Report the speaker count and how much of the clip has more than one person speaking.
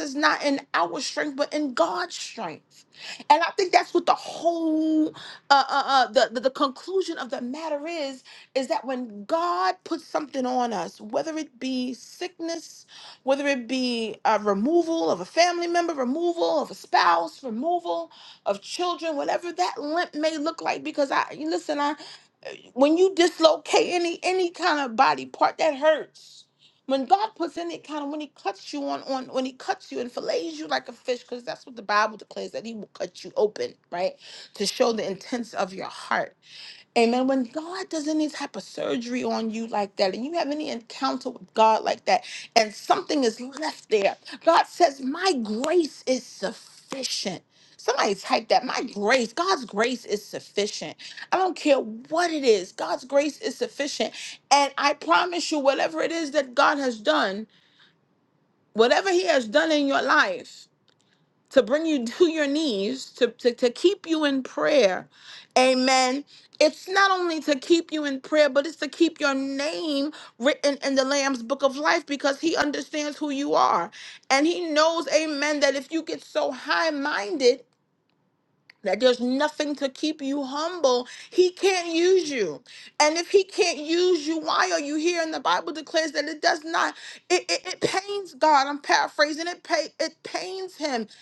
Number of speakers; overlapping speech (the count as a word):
one, no overlap